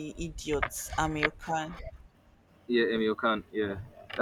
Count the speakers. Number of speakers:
2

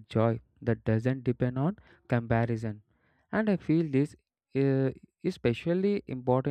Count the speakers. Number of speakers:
1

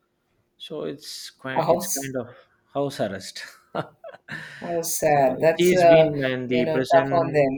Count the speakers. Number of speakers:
2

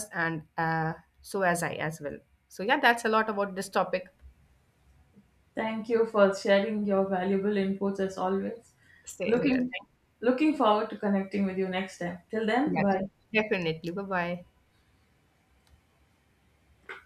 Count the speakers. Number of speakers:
2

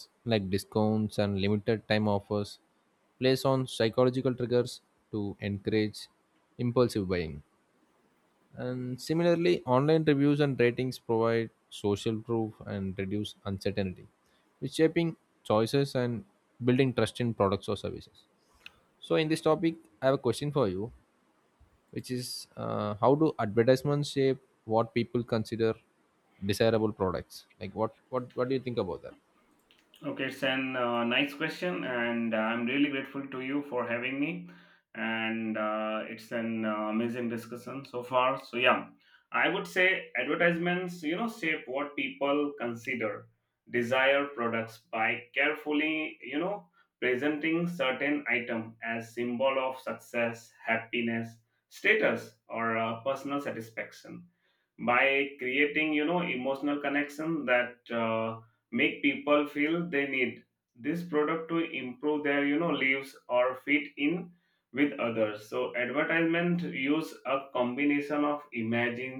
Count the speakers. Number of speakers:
2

